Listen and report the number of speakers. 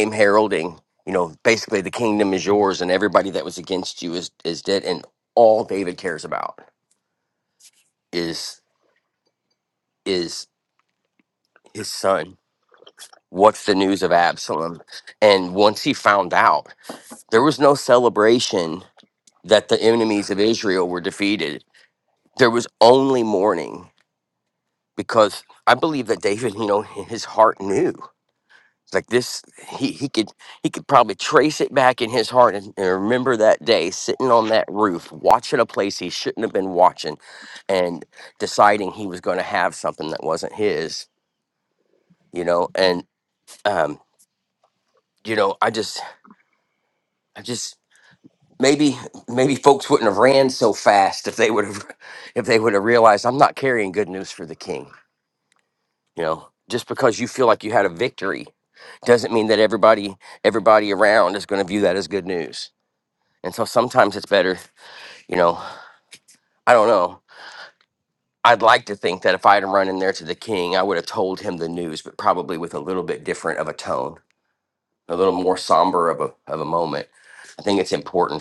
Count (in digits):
1